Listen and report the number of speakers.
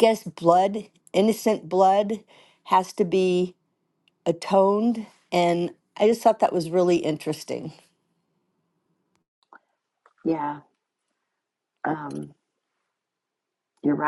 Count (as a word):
two